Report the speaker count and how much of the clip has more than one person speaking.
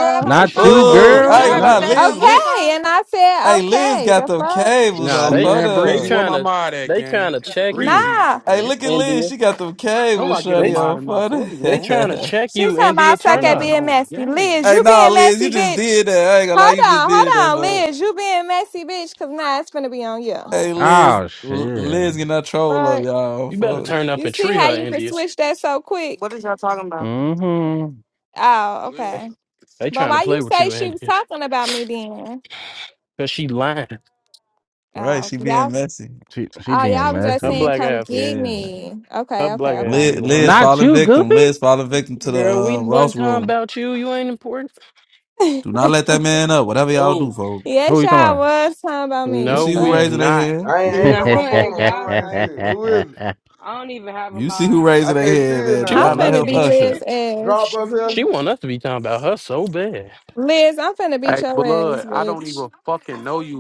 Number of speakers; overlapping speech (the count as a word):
eight, about 52%